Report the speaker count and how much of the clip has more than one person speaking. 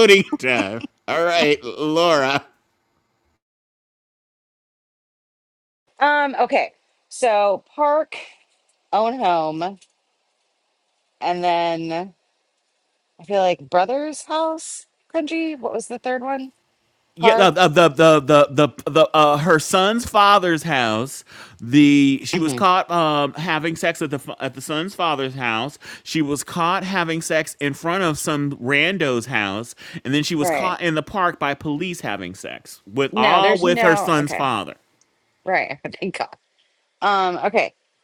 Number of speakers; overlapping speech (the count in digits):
2, about 6%